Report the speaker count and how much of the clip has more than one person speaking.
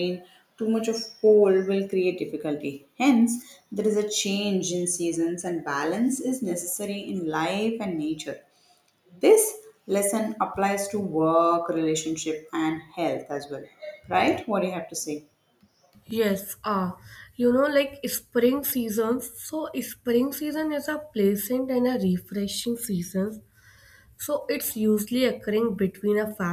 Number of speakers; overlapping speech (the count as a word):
two, no overlap